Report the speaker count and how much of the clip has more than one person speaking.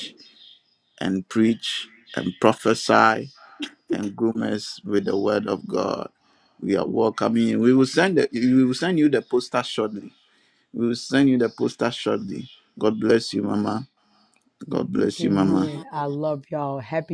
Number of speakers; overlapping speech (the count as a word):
two, about 3%